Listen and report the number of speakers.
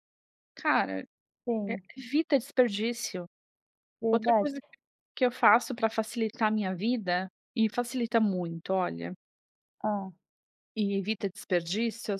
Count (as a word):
two